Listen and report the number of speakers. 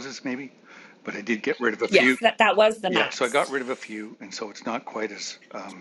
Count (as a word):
two